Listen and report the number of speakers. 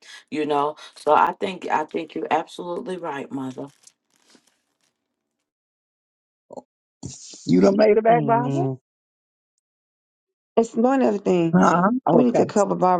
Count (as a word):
three